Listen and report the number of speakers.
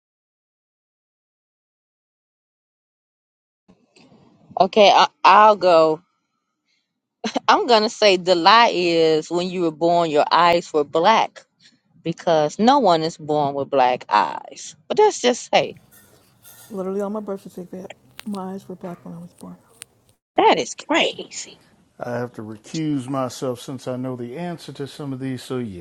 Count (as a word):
three